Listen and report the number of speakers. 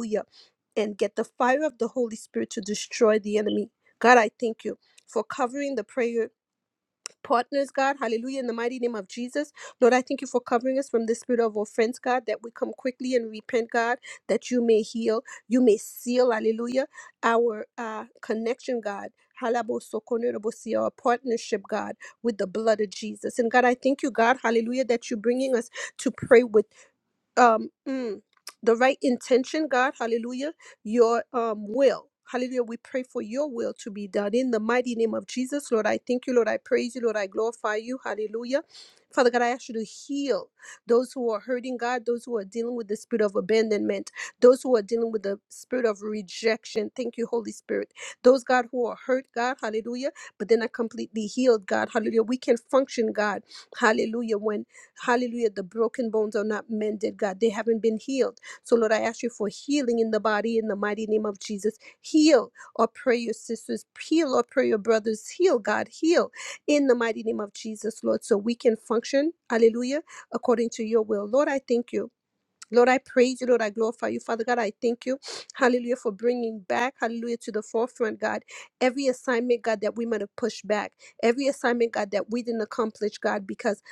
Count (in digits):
1